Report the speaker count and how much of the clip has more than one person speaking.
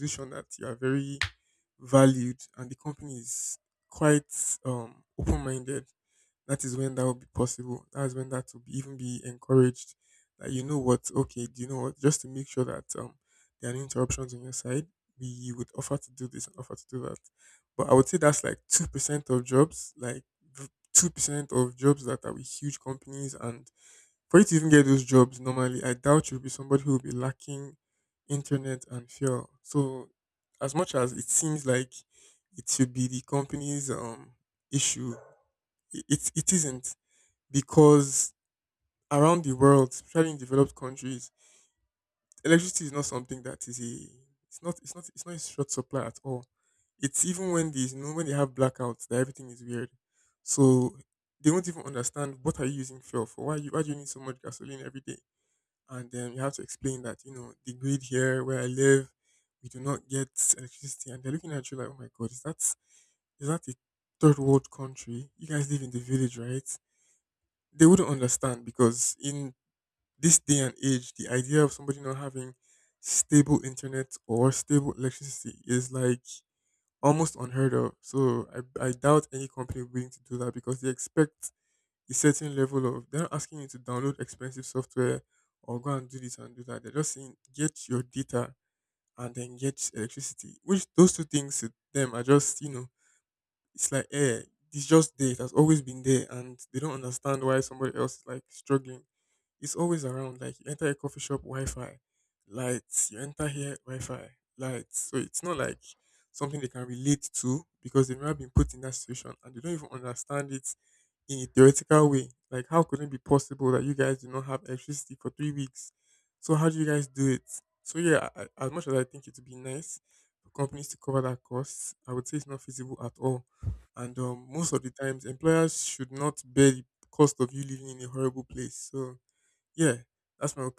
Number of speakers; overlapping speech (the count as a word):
one, no overlap